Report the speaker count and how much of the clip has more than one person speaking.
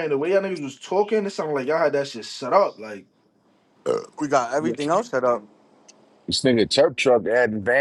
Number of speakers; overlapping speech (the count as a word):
three, no overlap